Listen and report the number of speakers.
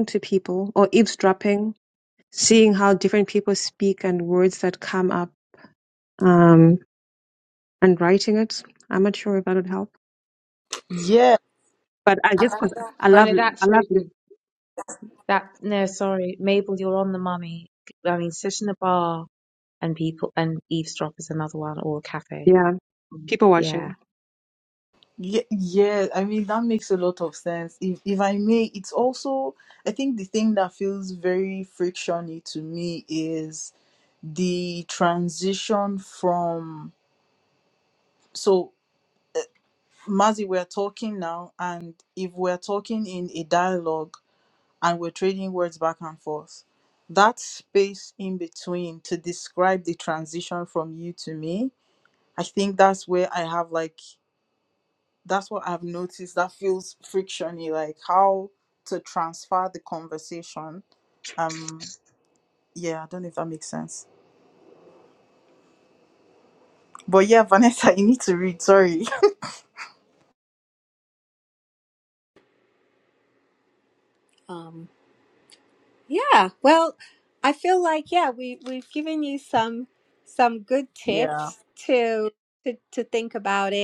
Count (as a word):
four